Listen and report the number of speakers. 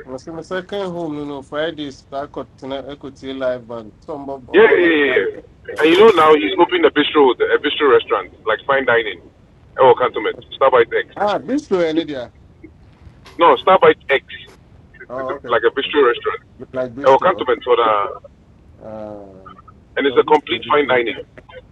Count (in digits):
2